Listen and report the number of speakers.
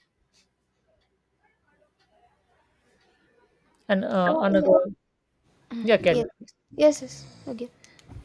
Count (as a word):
two